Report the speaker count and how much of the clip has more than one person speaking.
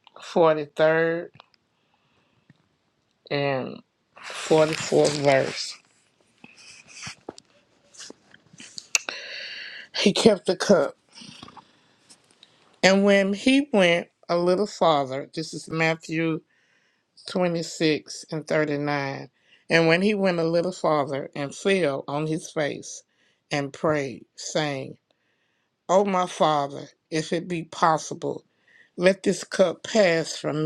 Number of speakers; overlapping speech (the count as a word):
one, no overlap